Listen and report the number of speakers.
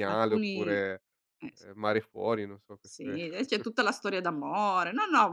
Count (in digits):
2